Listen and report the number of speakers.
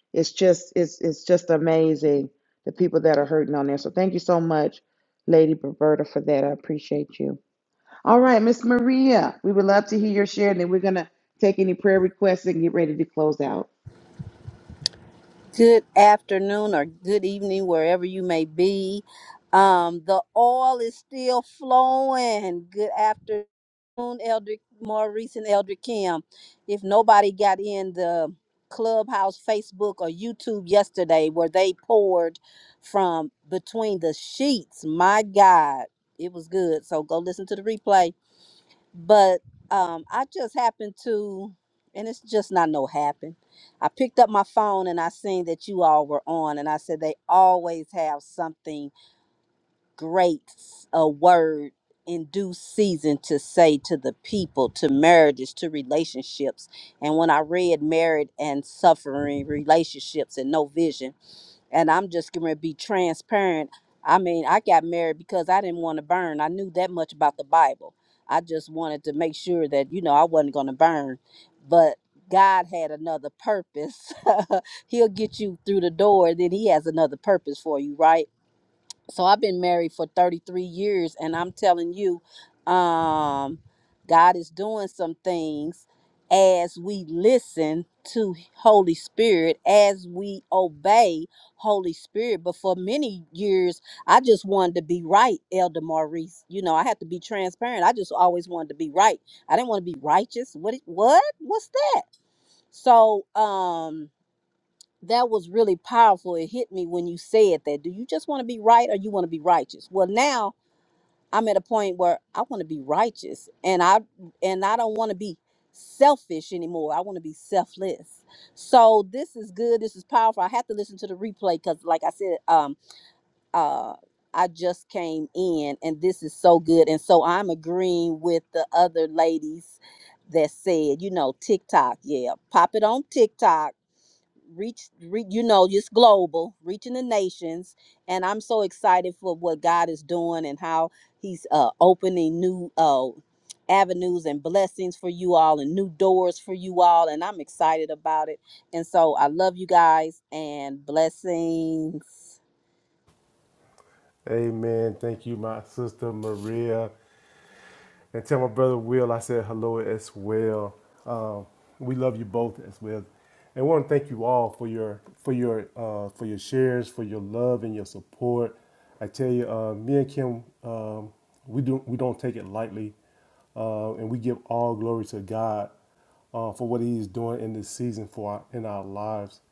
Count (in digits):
3